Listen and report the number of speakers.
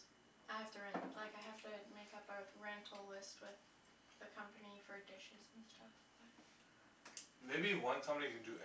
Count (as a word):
two